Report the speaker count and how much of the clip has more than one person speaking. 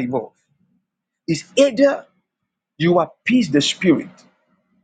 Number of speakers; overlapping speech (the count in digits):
1, no overlap